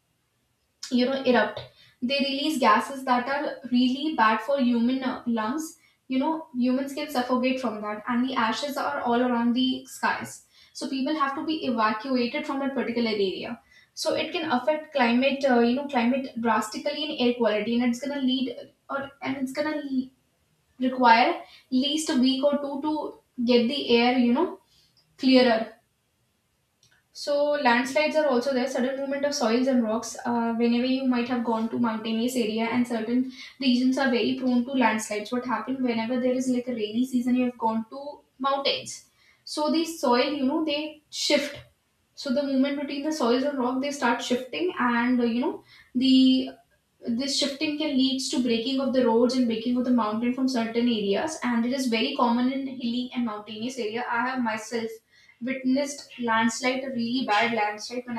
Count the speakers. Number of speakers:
one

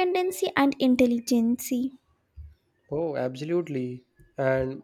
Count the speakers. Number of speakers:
two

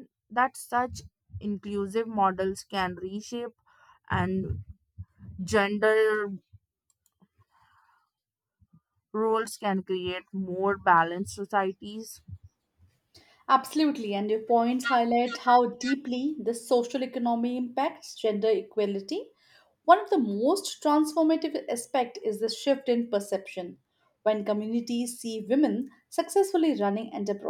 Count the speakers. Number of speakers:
two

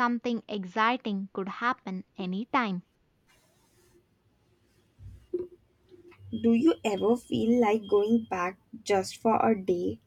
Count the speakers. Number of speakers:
two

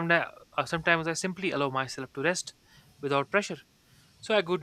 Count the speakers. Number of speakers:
one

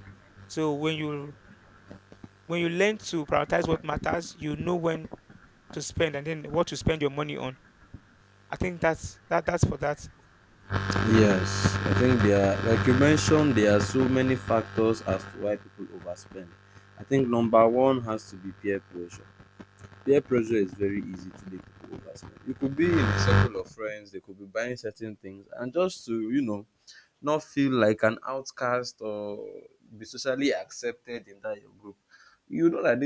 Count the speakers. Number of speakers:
two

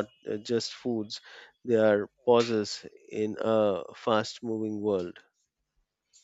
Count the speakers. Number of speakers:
one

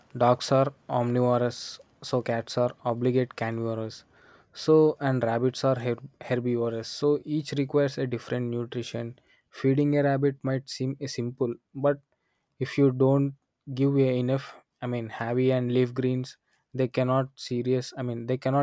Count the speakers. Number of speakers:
one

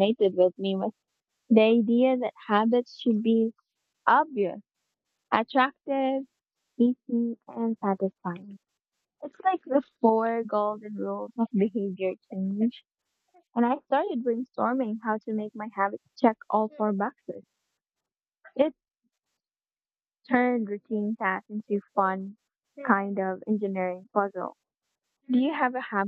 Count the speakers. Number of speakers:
one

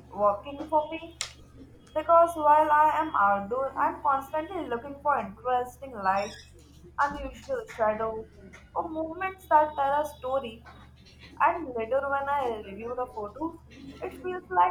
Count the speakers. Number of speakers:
one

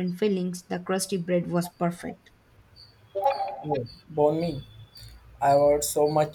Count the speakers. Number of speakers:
two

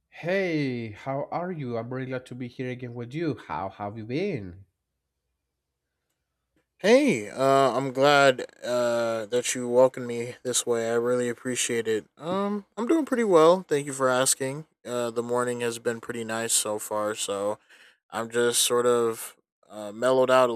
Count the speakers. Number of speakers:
two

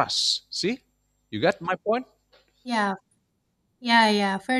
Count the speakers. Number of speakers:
two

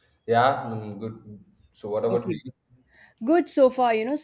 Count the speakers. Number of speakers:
two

